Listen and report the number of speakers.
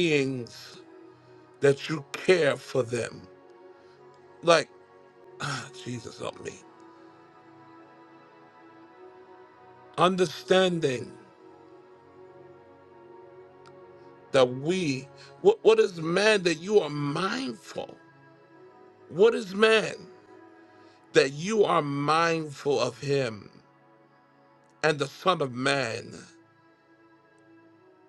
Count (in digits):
1